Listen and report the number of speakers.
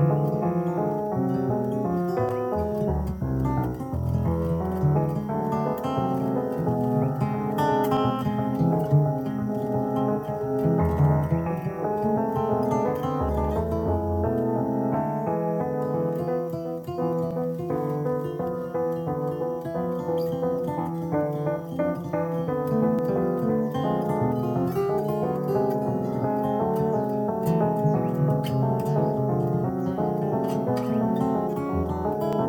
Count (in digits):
0